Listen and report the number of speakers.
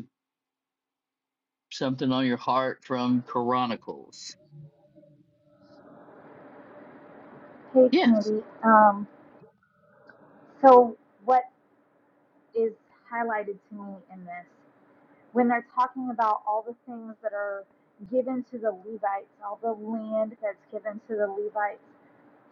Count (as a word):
two